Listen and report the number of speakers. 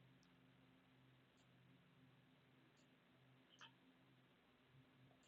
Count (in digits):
0